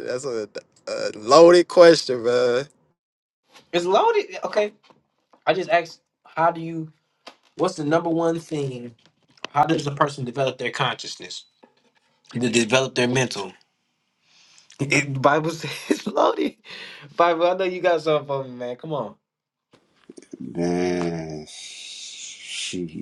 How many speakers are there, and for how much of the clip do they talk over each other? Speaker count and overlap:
three, no overlap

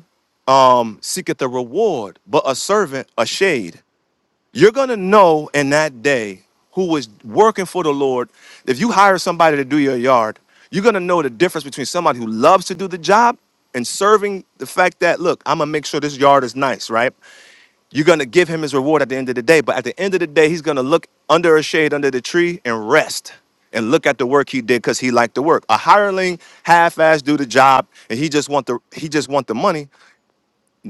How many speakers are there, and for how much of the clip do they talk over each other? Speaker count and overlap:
one, no overlap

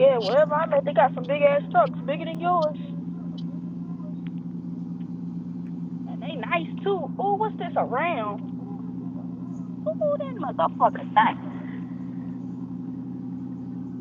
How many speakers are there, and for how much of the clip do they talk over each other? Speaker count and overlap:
one, no overlap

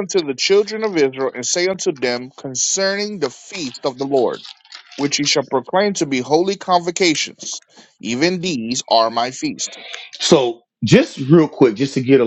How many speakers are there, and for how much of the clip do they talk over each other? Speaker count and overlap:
two, no overlap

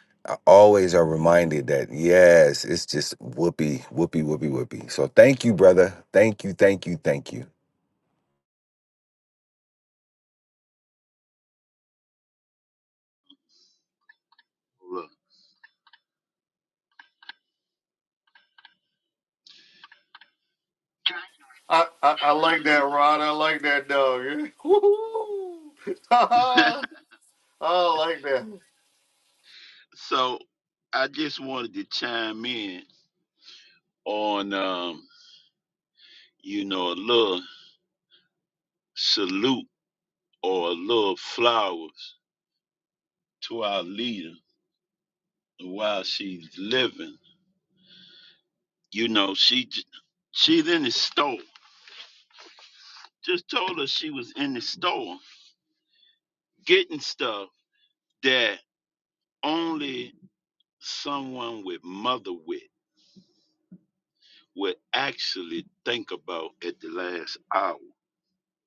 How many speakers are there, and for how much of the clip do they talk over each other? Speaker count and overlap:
three, no overlap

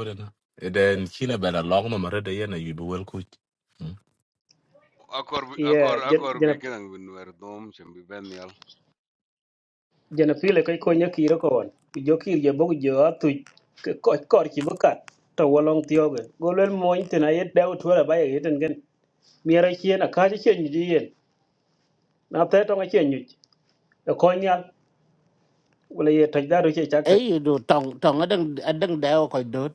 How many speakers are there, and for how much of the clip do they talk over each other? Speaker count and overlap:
four, about 4%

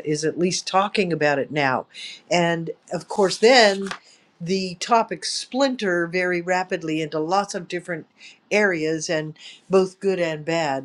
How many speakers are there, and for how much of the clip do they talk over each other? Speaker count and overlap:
one, no overlap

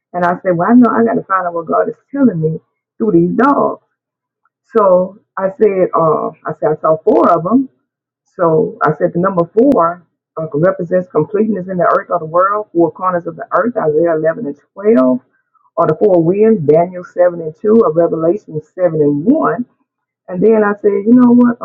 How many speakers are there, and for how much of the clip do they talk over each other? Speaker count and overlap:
one, no overlap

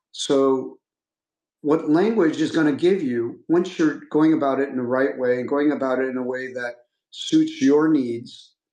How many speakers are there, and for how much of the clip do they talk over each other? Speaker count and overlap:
one, no overlap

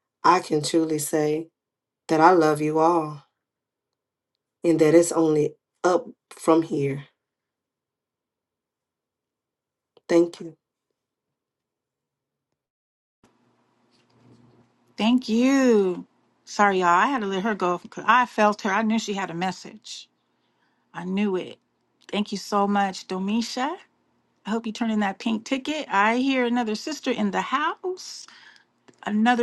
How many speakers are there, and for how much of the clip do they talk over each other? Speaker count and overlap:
two, no overlap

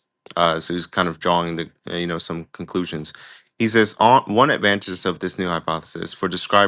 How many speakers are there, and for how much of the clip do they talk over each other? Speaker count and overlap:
one, no overlap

